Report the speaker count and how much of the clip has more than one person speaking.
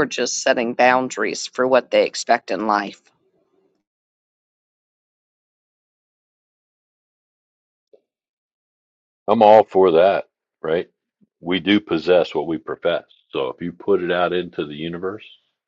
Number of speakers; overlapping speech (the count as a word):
two, no overlap